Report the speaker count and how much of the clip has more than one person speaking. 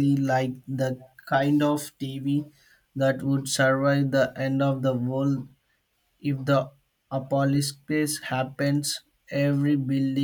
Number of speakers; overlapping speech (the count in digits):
1, no overlap